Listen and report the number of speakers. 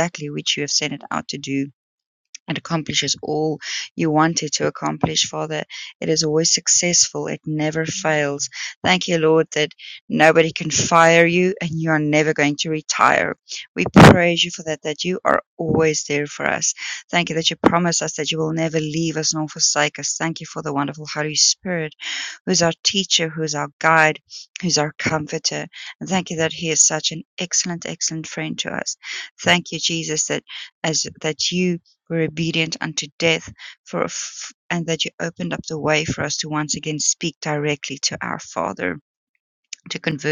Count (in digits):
1